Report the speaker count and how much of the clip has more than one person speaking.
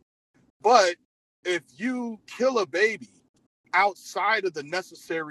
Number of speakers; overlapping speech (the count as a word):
one, no overlap